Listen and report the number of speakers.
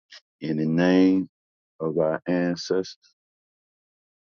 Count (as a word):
one